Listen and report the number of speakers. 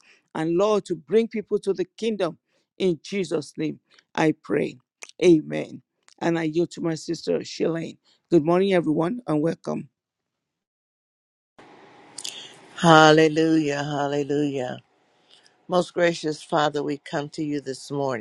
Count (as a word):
two